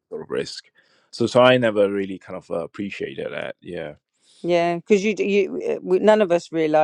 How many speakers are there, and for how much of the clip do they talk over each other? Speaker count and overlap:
two, no overlap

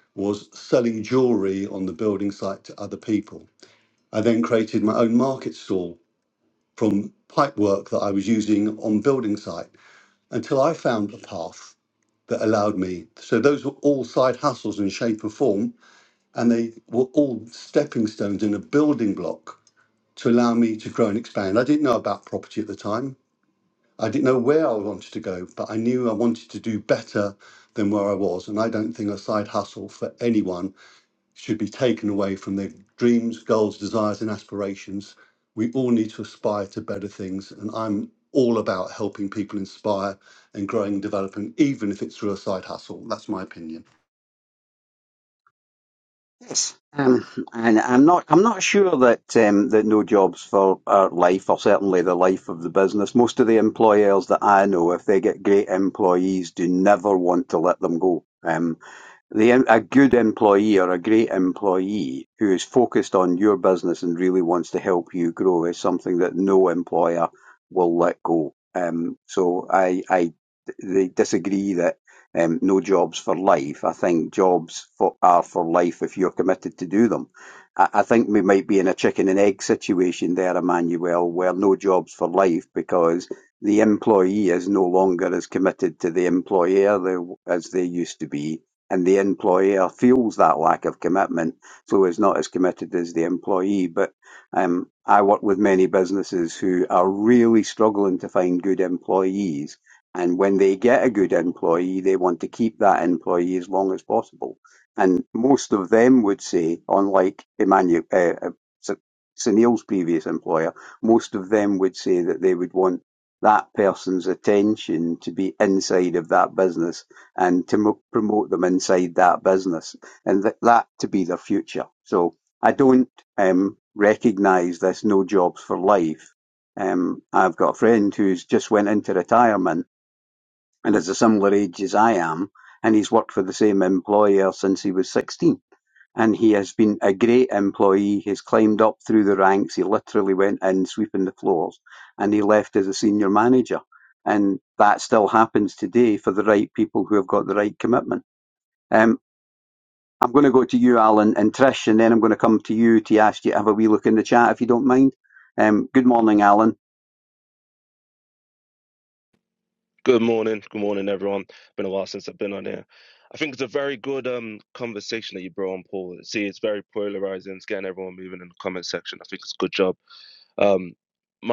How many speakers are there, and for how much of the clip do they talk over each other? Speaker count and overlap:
three, no overlap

